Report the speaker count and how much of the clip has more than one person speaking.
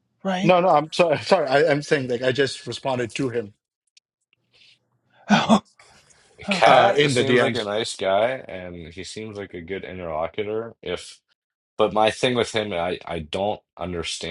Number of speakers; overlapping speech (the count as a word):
three, about 9%